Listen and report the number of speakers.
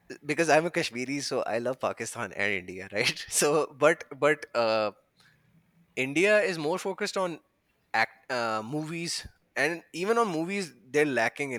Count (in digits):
1